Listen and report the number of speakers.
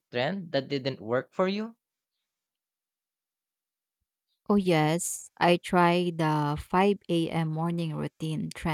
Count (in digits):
2